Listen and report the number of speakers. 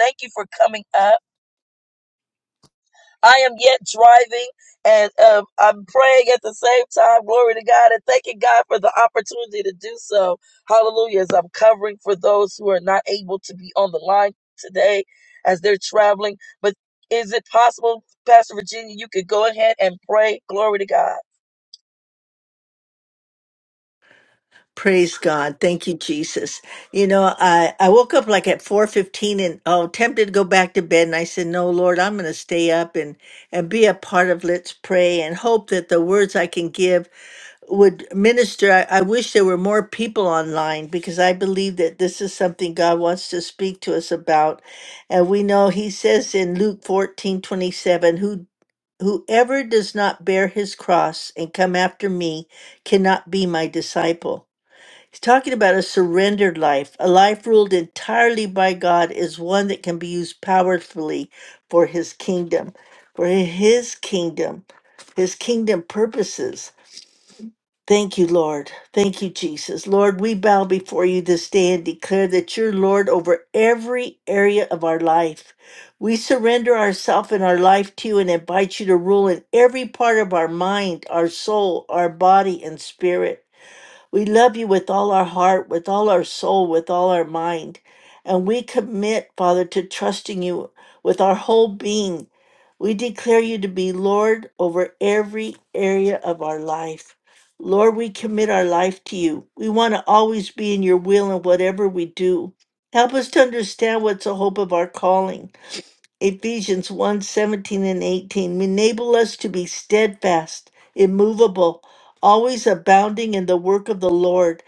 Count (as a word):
two